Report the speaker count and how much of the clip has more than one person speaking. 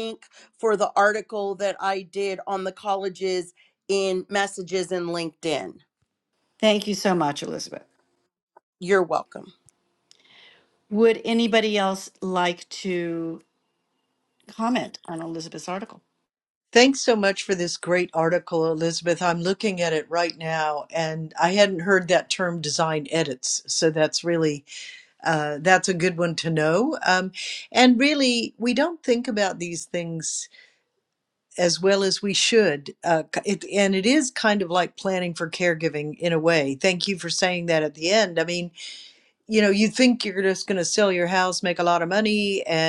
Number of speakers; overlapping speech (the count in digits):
3, no overlap